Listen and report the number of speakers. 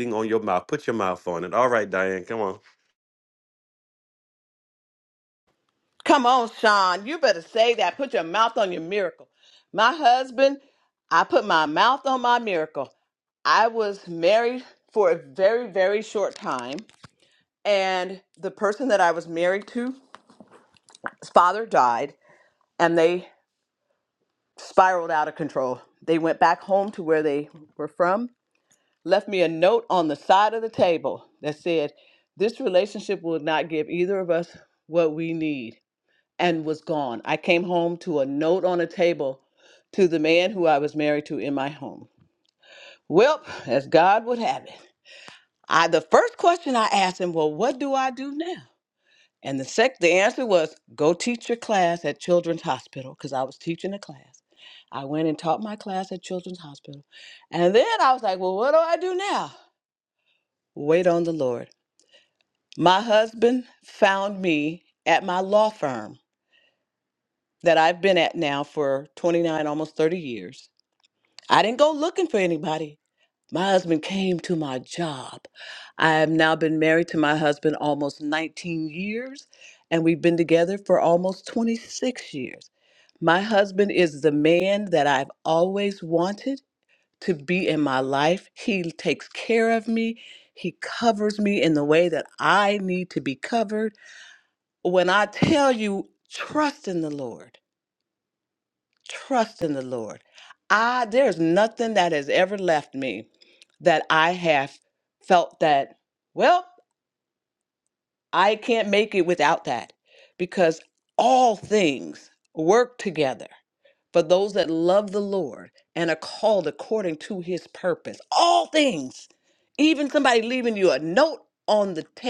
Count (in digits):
2